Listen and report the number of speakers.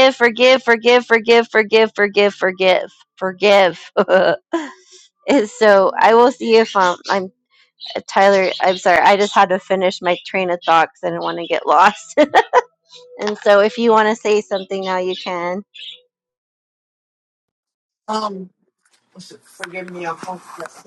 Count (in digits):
2